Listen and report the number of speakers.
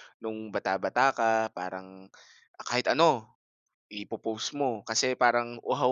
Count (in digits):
1